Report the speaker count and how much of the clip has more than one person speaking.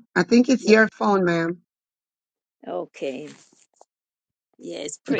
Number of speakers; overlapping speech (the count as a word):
two, about 5%